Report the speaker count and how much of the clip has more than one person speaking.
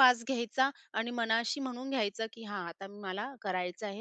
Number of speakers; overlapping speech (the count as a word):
one, no overlap